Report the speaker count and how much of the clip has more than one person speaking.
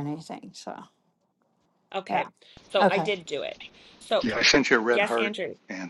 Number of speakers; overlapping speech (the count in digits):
3, about 16%